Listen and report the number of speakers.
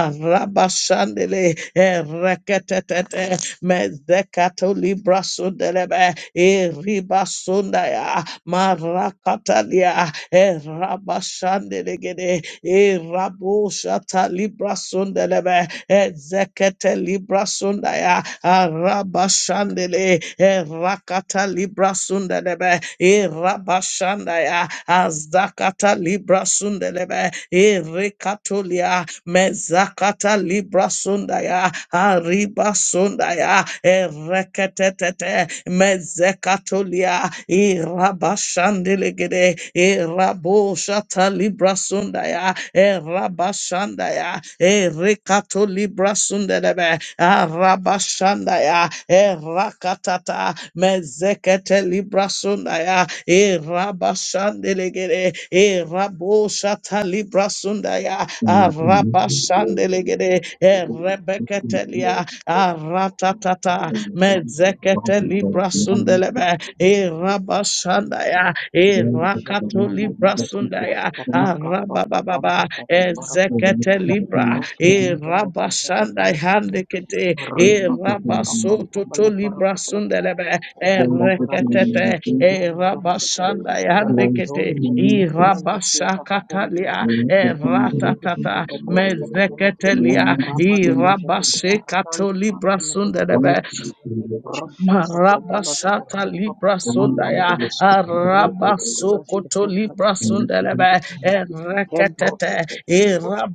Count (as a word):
three